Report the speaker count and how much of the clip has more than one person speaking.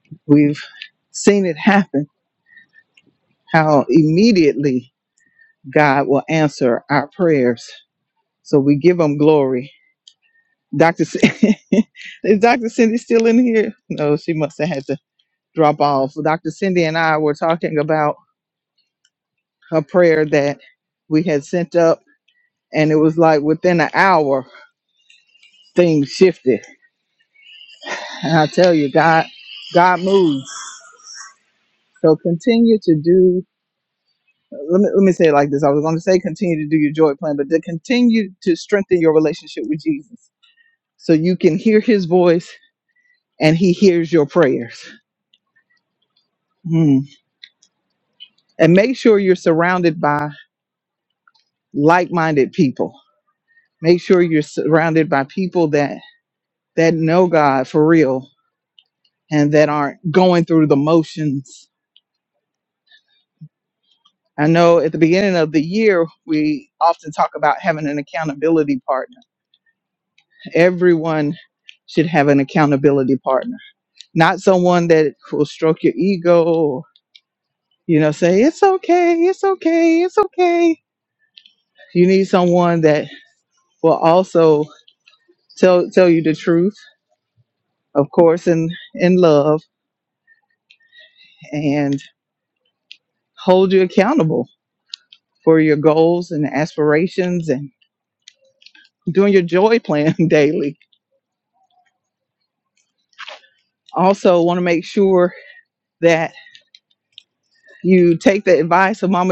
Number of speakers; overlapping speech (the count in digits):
1, no overlap